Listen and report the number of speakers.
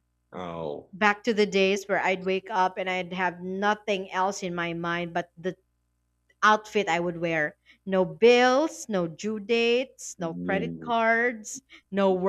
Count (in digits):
2